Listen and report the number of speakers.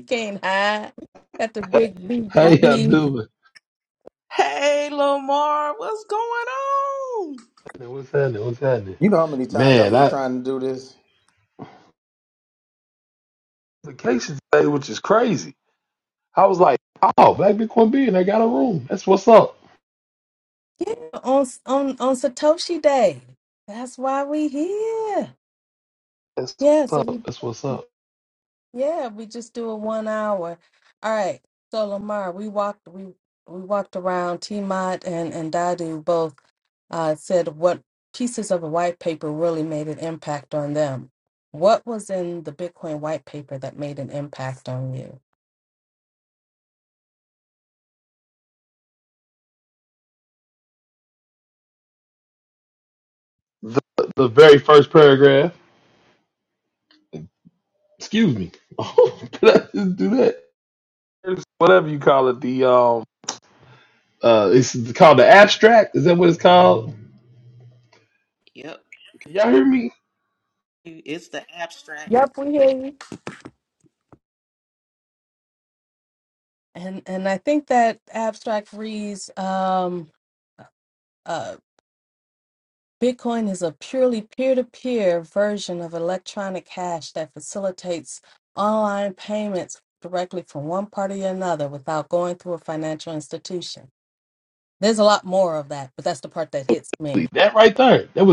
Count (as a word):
four